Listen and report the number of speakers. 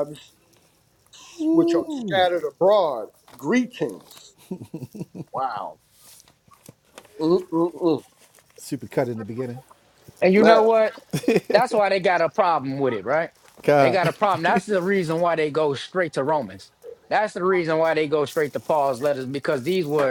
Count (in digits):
3